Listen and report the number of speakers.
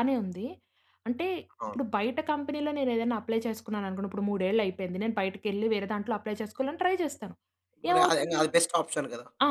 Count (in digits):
2